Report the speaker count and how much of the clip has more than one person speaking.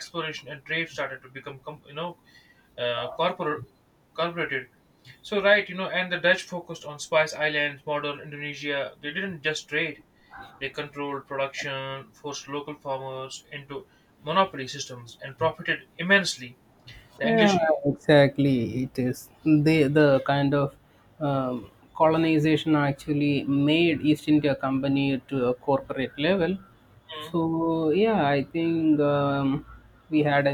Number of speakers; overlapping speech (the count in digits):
2, about 2%